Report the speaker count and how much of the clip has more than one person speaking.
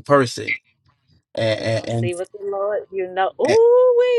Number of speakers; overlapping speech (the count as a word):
two, about 16%